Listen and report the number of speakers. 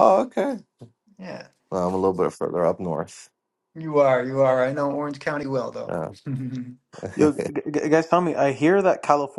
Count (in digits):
3